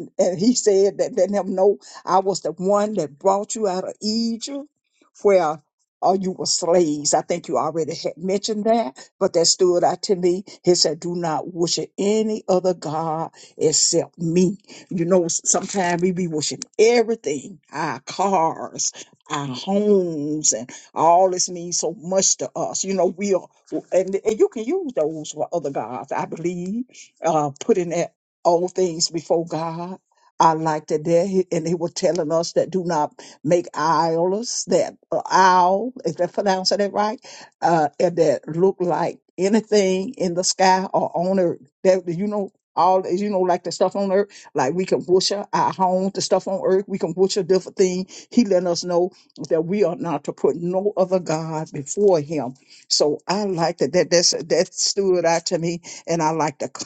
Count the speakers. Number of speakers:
one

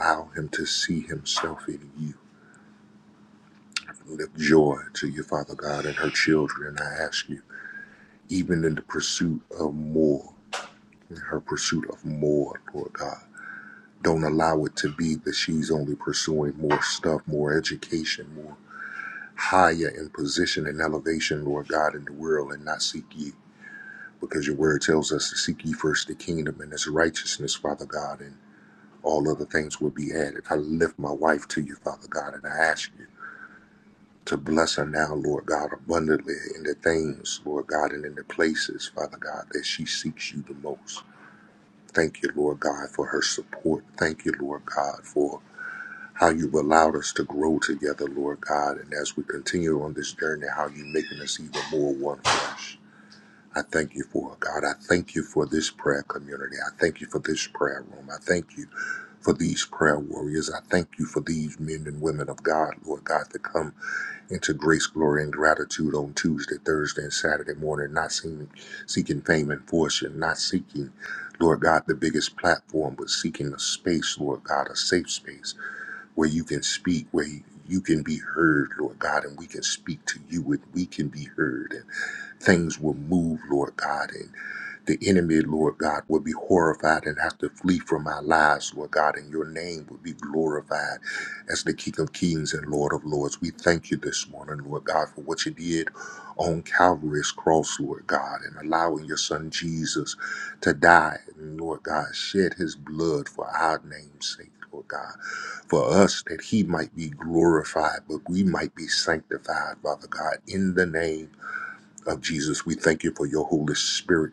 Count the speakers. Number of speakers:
one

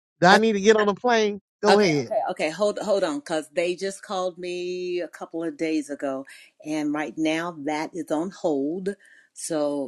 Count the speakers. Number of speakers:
two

